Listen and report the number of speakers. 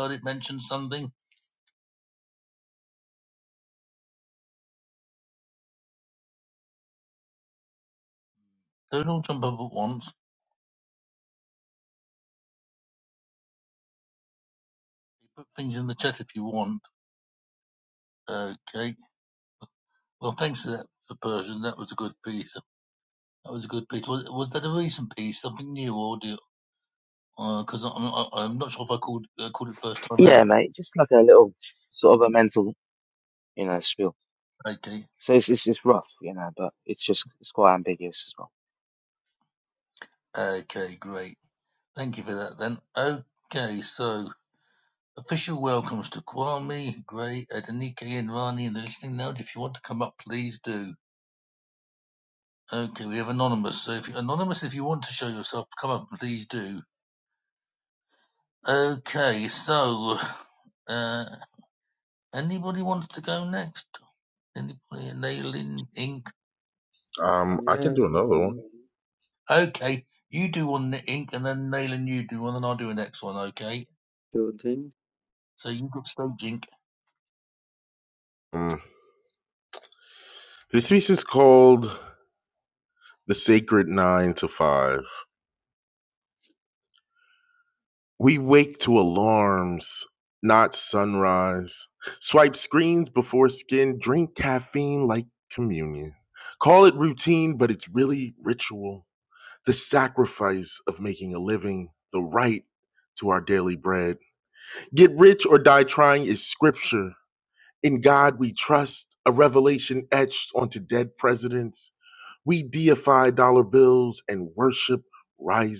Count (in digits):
4